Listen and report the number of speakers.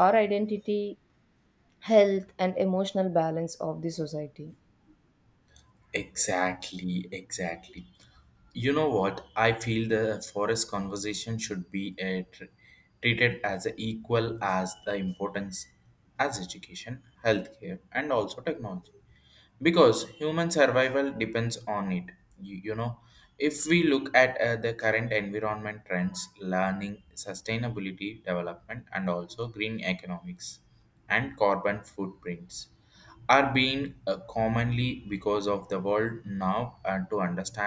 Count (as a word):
two